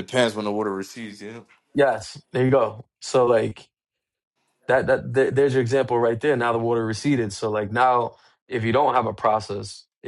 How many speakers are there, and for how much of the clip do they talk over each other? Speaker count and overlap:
two, under 1%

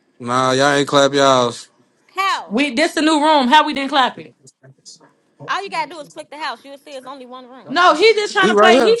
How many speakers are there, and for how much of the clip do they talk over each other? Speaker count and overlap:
three, about 6%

